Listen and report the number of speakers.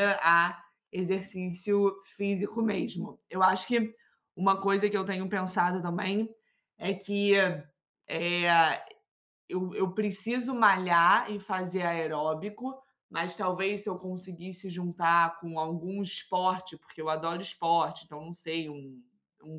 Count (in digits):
1